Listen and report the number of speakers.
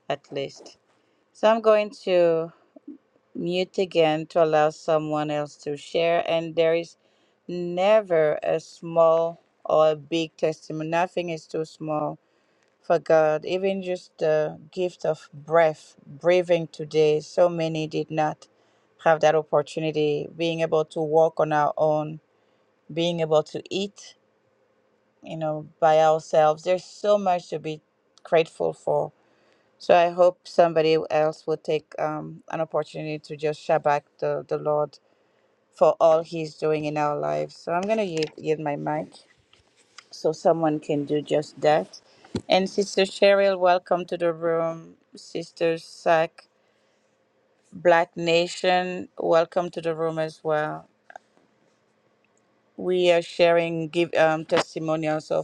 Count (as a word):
one